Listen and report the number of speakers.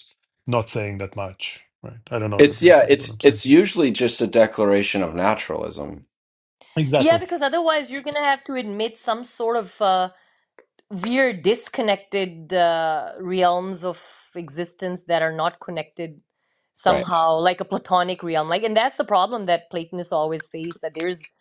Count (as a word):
three